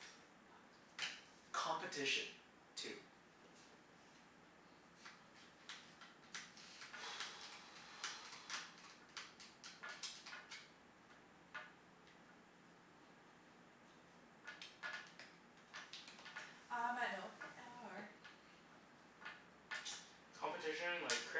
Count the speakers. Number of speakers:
3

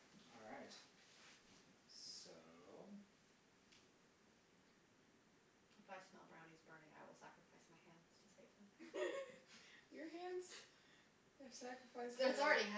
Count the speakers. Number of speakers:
3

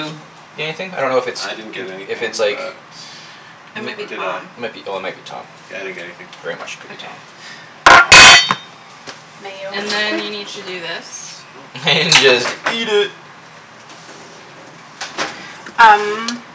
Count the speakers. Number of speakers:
4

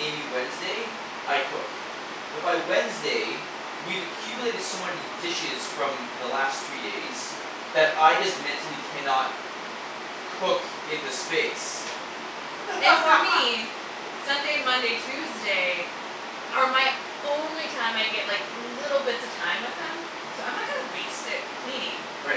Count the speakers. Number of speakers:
2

